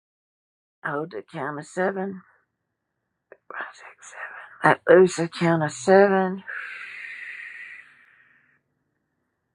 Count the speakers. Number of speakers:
one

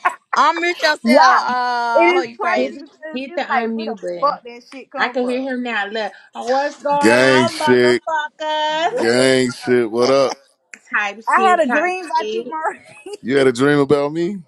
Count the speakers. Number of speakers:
four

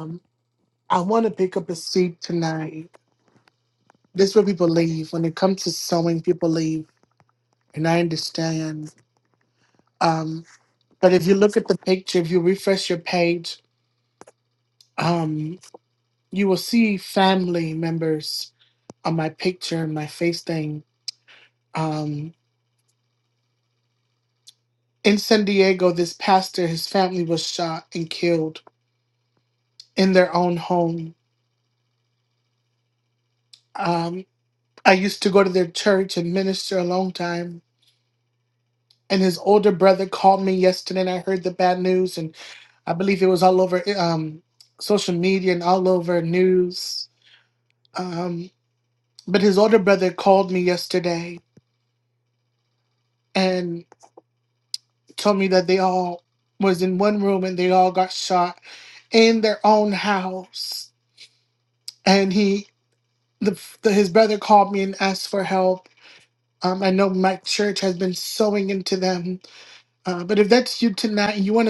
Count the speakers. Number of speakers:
one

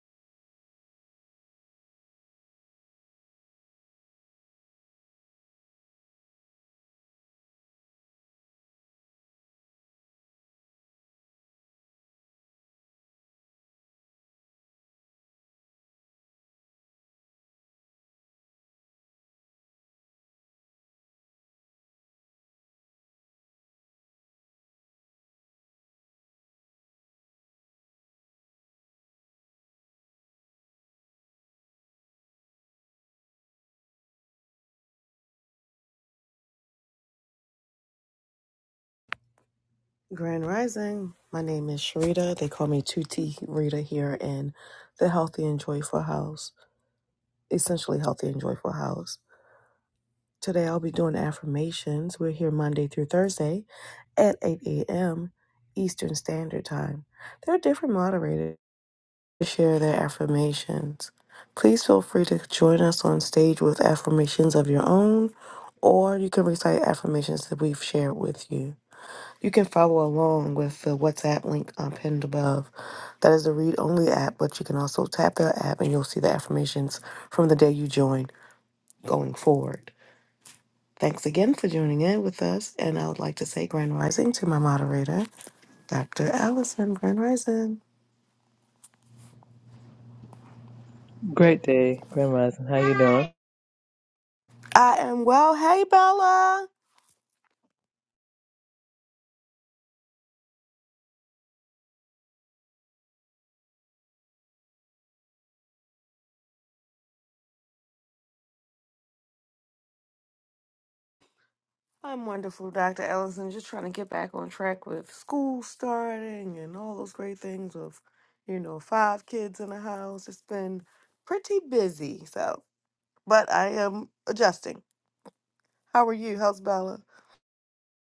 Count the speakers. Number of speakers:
two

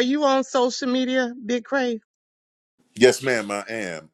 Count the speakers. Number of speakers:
two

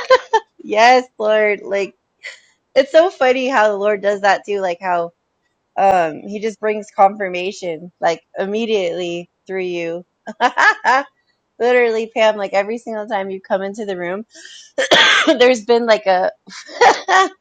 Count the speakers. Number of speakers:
one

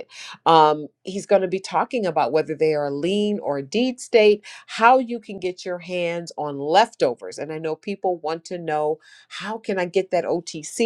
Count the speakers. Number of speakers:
one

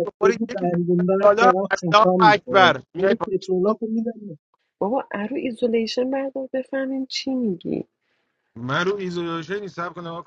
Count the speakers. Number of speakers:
three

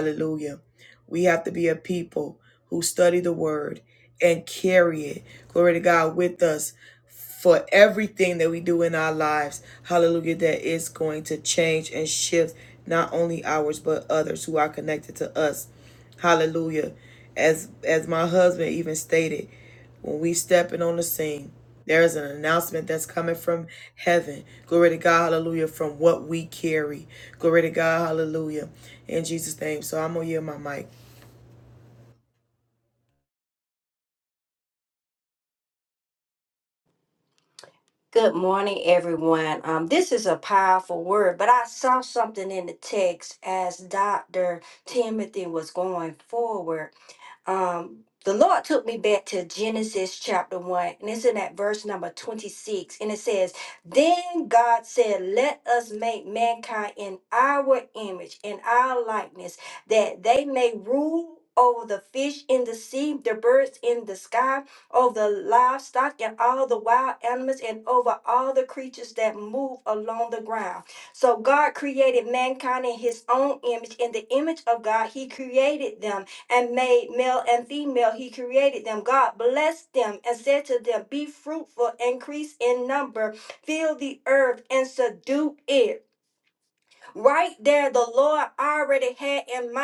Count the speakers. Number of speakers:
two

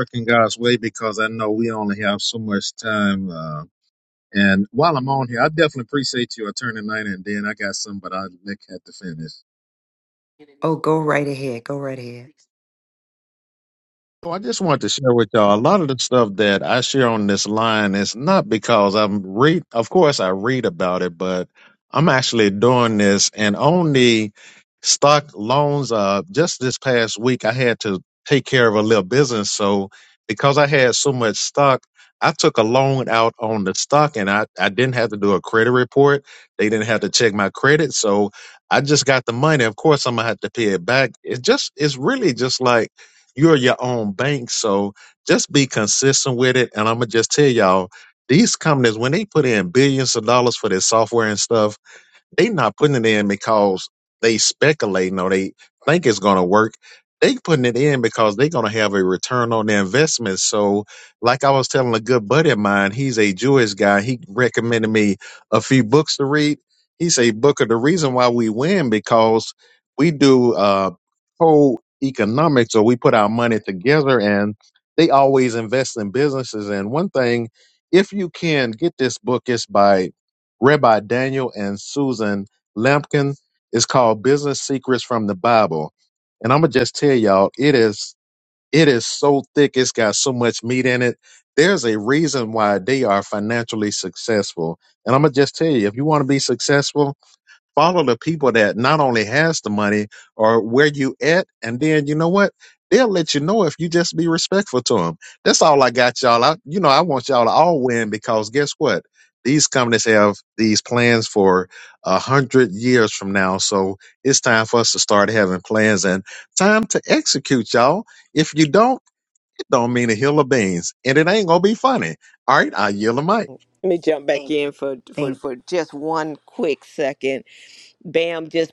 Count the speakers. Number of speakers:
three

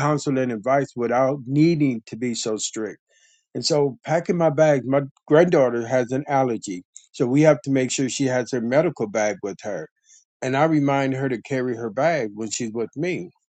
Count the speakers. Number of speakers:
one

